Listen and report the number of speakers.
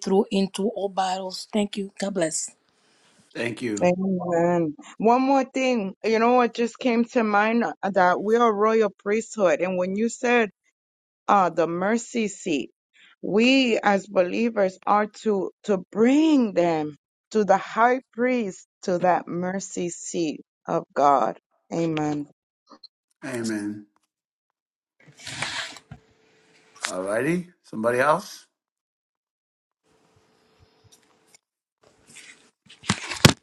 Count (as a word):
three